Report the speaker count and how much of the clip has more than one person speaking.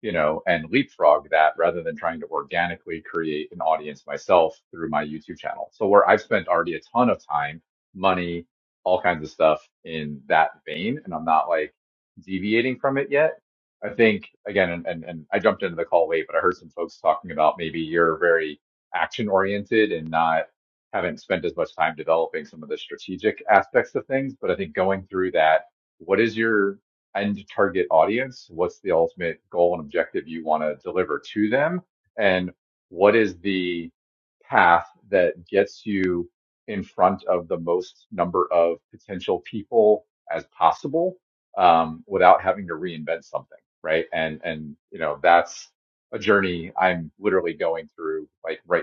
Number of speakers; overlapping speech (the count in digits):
1, no overlap